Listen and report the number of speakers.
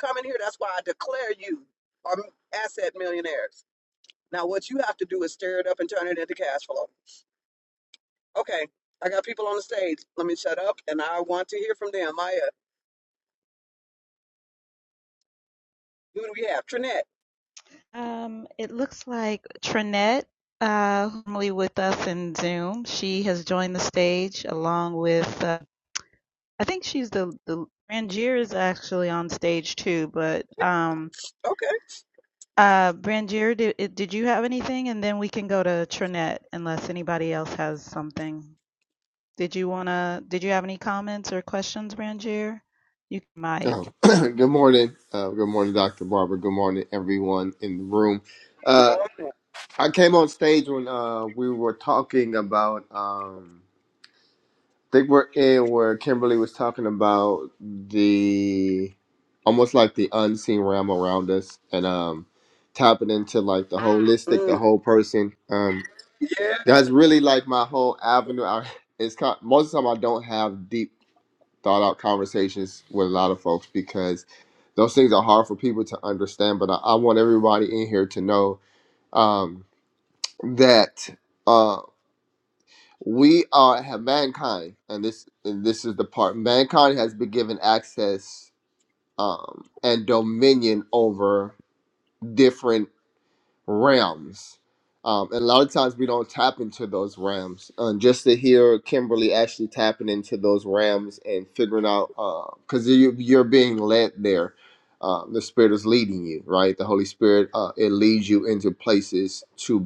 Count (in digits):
3